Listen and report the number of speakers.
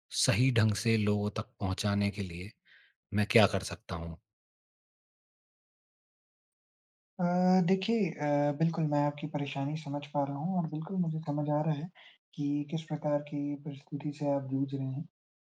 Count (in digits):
2